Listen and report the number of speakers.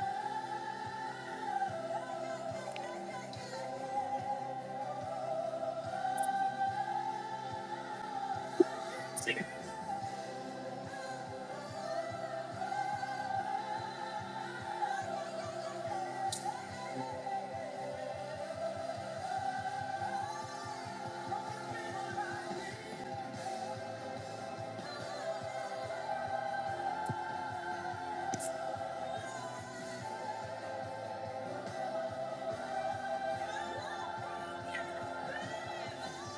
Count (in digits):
0